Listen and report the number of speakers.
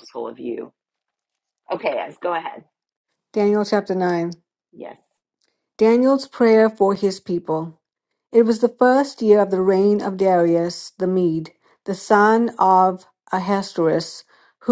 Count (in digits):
2